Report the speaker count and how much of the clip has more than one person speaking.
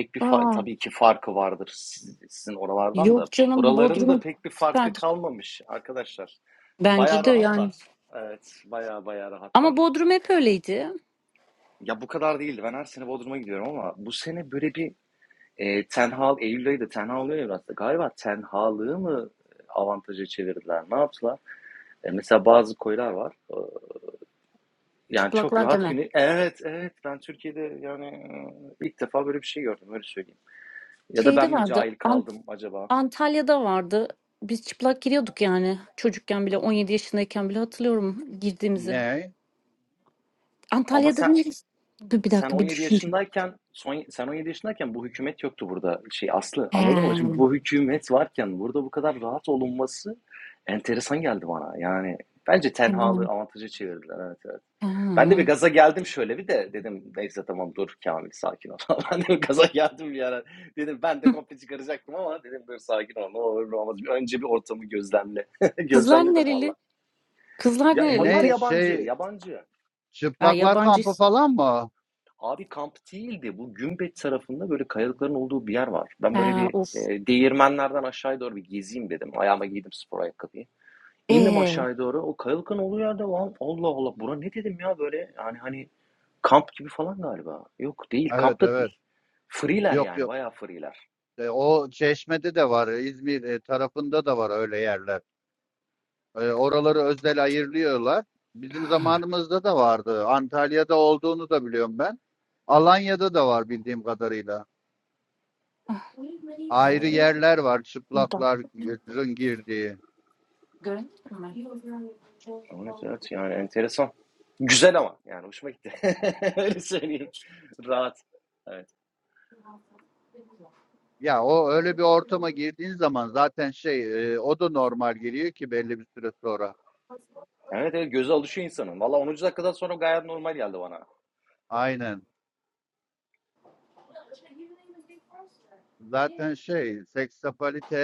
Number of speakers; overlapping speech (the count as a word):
three, about 9%